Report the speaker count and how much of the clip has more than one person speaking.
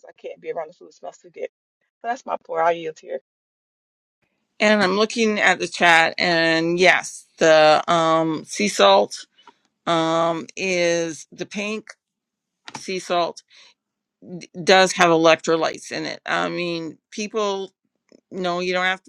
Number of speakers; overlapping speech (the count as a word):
two, no overlap